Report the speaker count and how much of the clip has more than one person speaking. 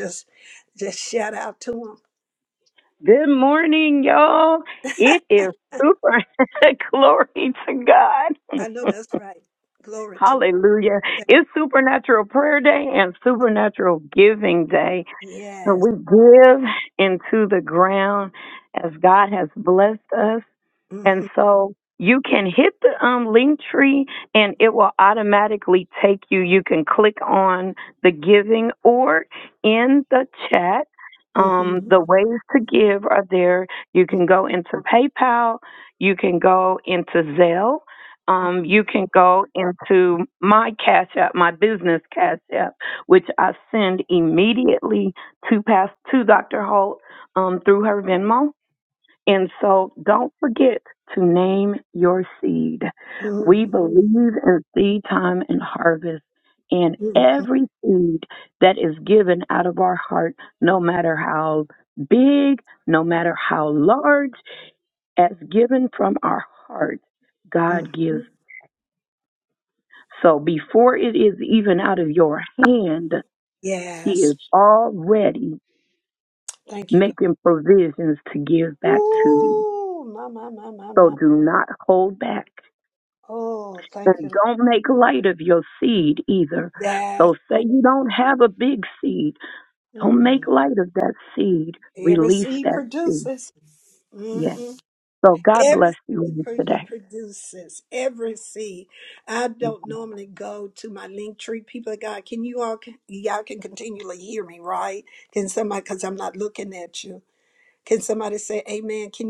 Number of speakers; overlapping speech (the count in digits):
2, about 7%